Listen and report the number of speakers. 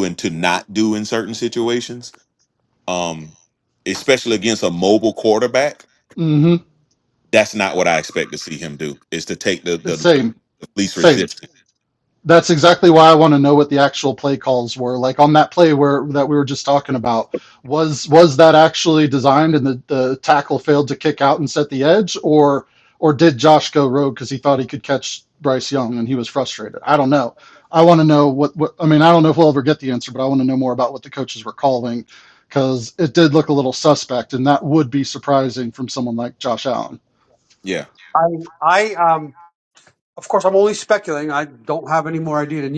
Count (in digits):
3